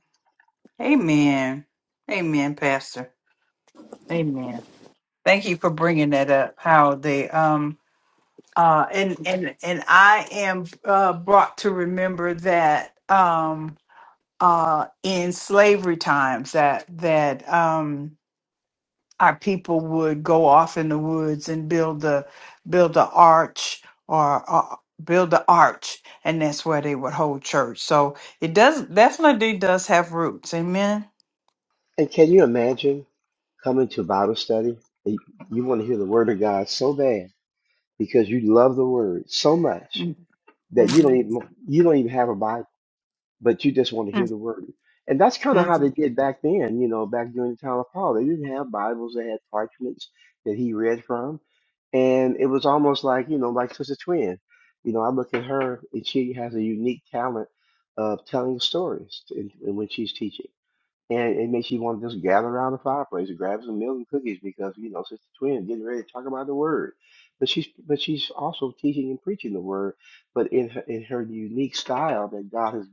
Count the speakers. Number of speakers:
2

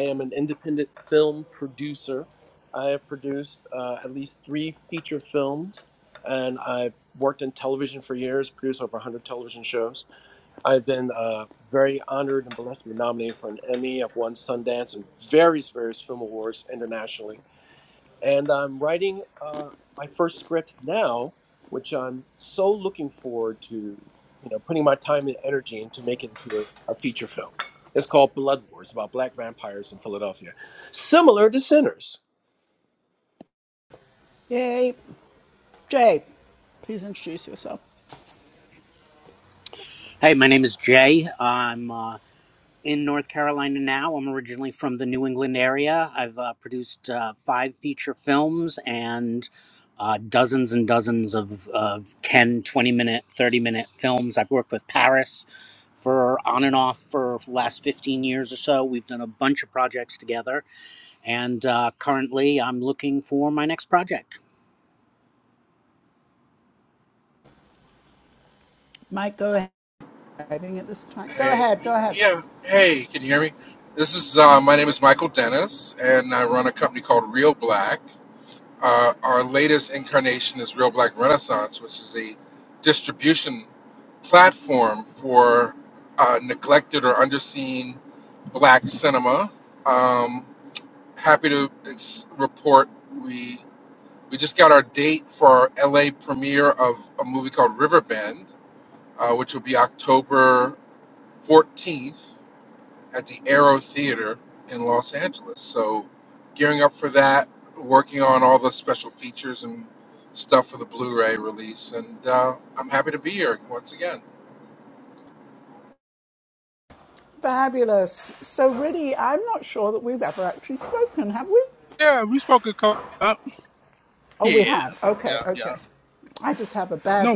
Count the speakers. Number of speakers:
5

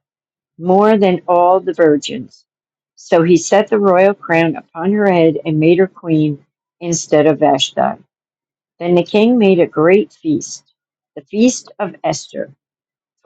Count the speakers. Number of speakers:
1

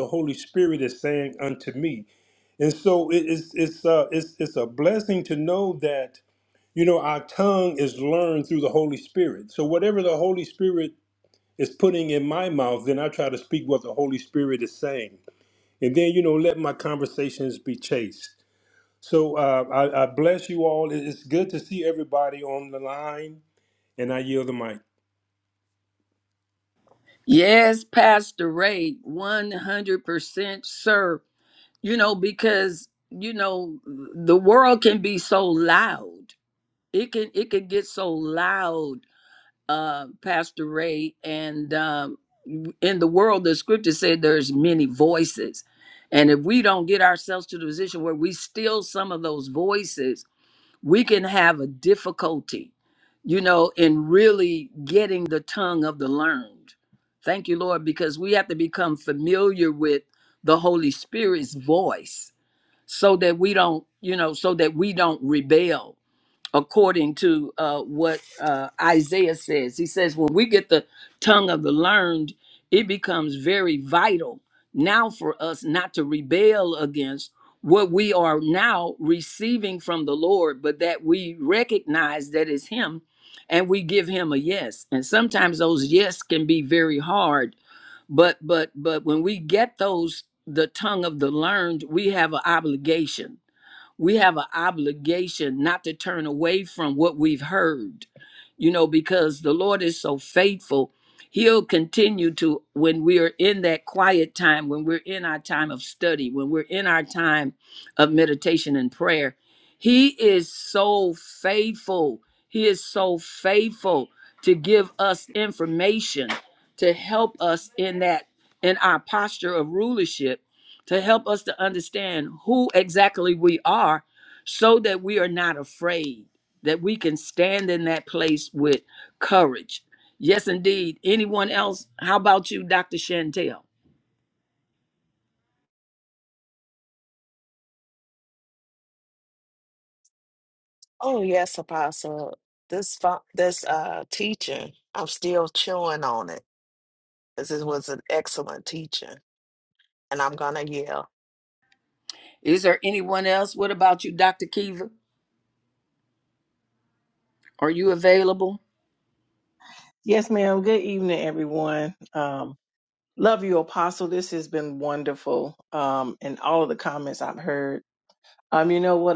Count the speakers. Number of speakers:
4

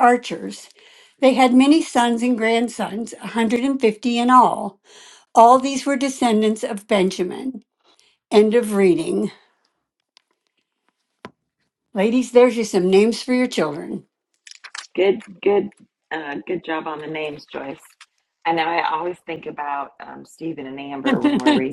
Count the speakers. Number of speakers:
2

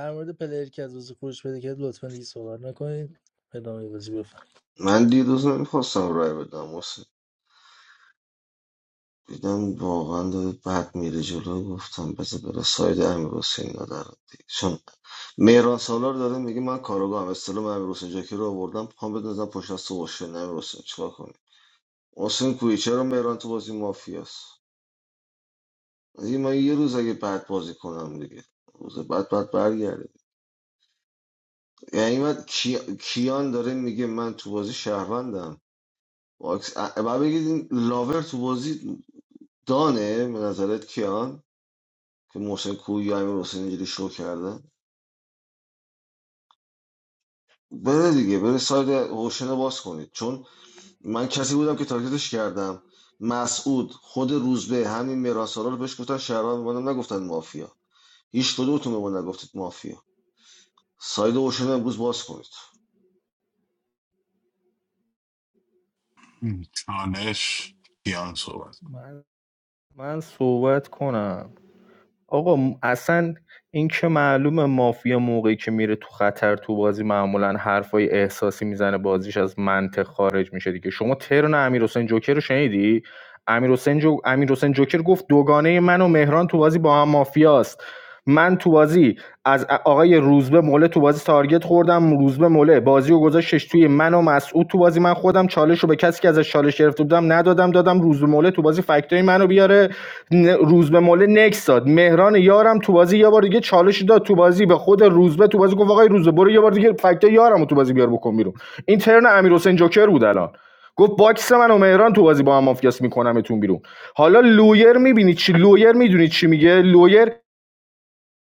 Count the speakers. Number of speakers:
4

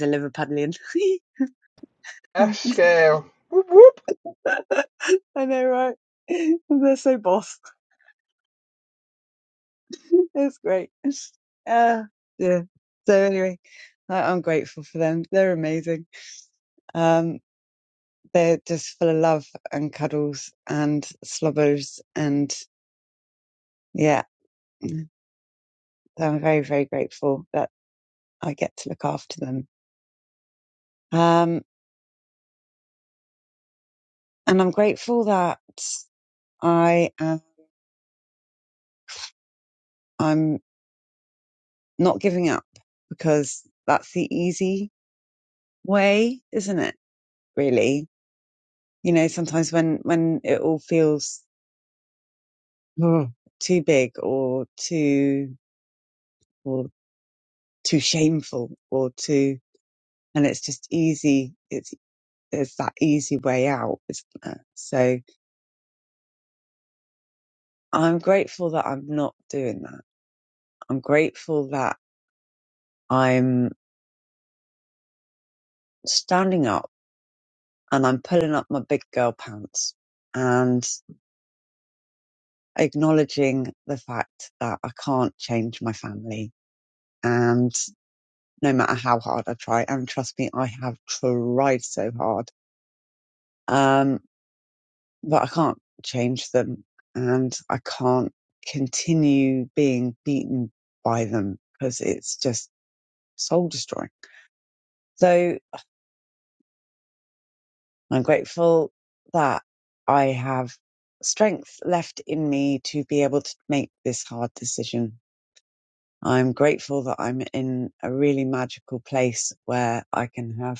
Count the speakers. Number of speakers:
2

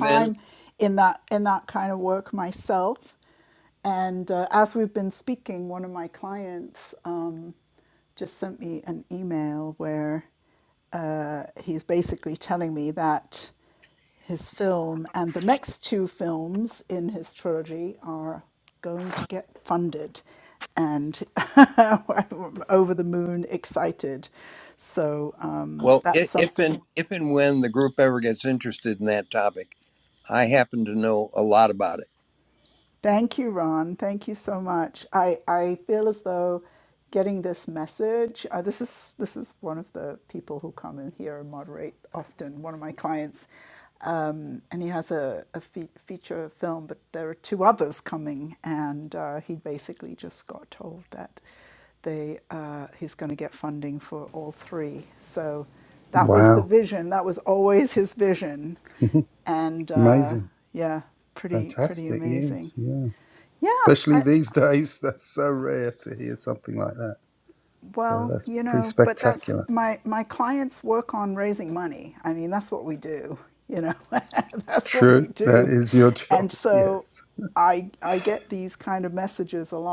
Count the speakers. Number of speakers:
3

